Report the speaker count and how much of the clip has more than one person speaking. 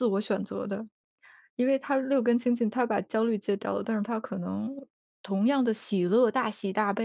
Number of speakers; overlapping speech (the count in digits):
1, no overlap